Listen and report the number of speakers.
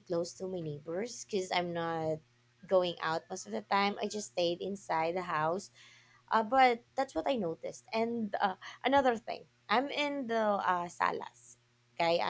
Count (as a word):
one